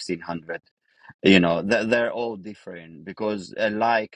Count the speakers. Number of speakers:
1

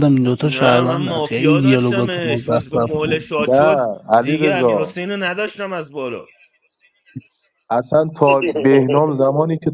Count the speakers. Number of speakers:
3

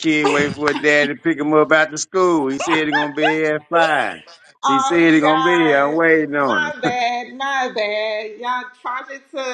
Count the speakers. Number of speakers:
2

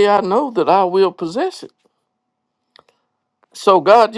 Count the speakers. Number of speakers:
1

